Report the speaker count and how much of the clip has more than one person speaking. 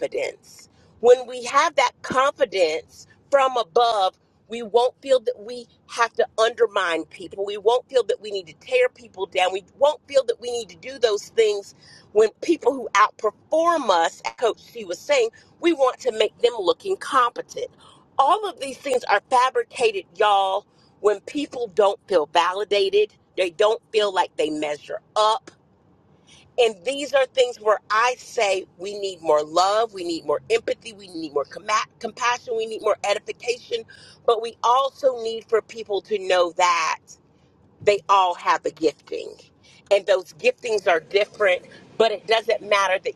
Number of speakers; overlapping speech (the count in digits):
1, no overlap